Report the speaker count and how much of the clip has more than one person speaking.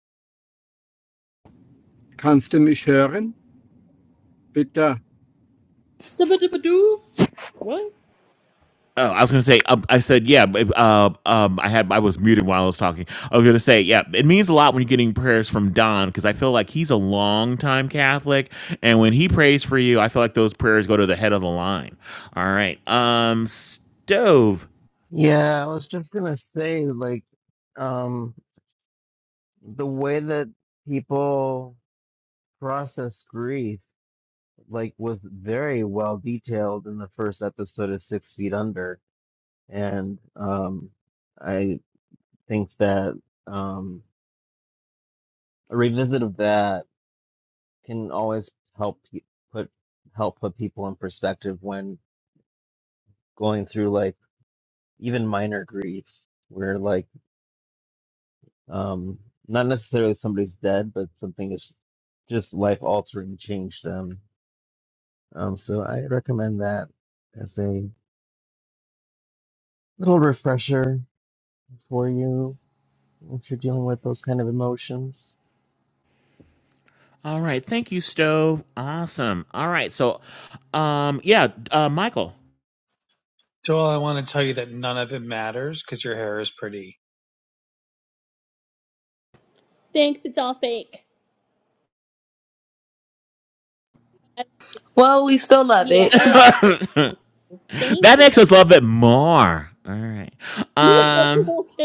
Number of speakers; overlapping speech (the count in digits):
6, about 1%